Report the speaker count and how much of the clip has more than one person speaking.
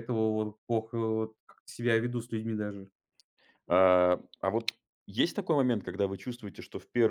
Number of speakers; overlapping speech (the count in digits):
2, no overlap